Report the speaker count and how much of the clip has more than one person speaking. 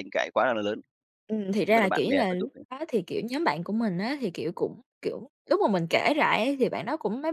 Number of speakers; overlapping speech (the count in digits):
2, about 13%